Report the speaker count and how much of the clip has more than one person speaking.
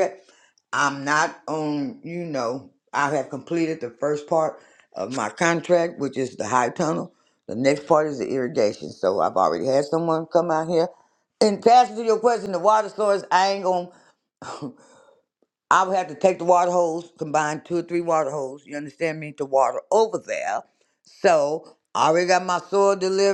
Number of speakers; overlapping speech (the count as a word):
one, no overlap